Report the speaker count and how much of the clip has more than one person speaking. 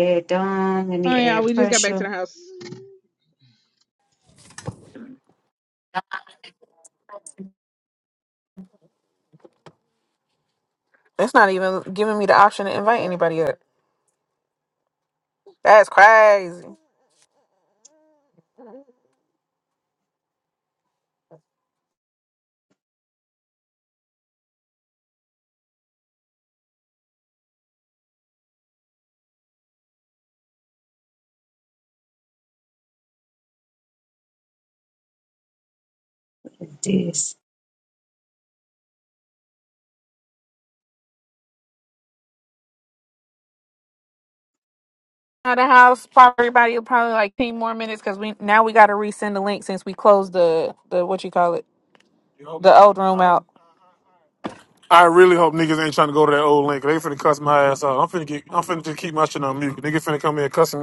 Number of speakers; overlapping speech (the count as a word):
three, about 2%